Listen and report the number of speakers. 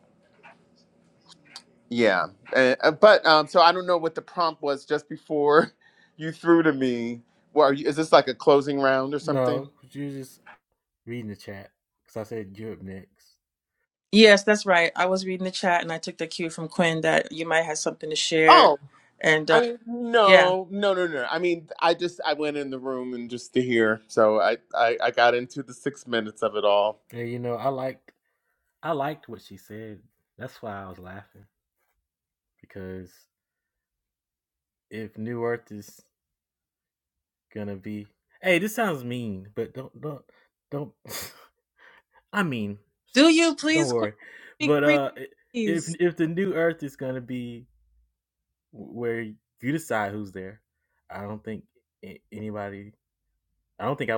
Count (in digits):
3